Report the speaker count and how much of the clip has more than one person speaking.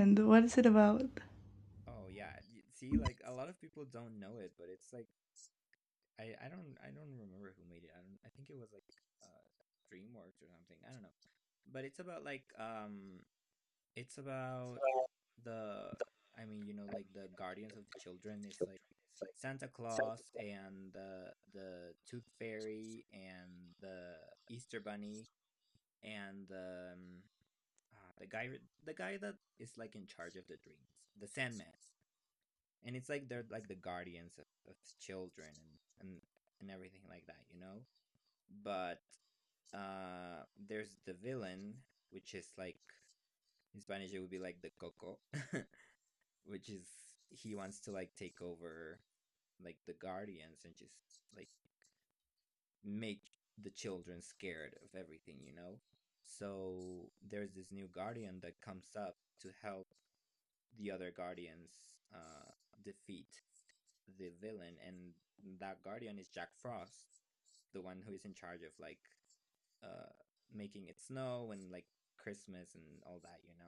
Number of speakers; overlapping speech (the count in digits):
2, no overlap